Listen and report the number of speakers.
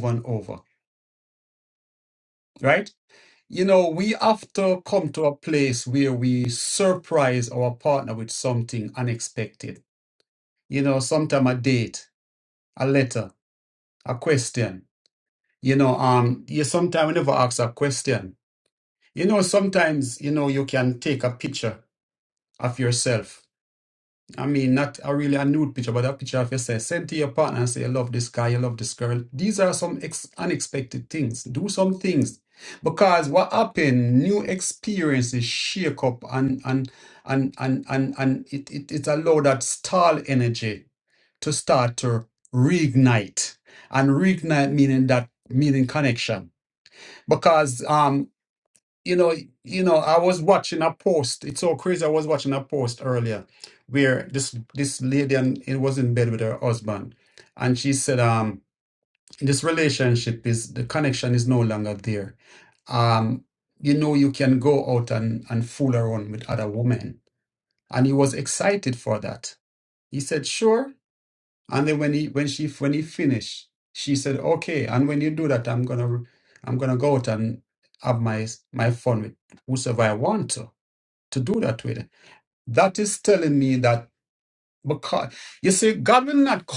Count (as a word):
one